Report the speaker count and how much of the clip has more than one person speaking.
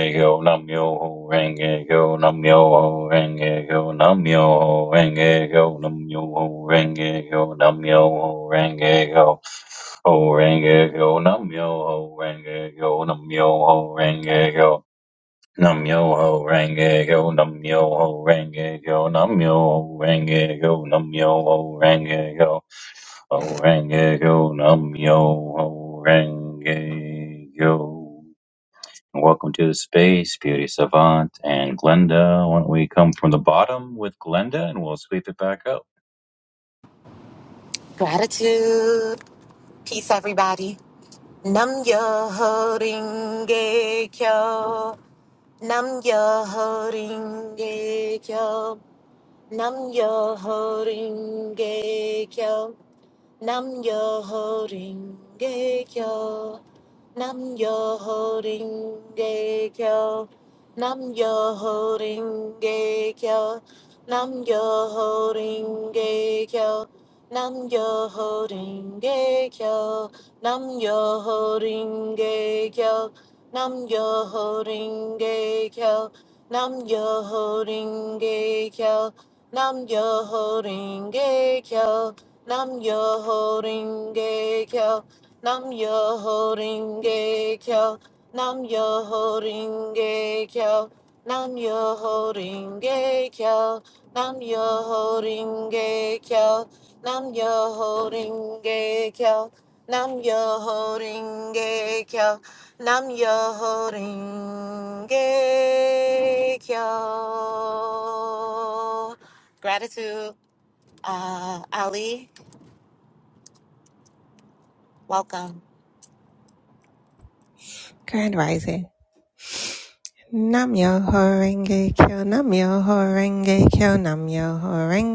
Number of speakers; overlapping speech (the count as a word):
three, no overlap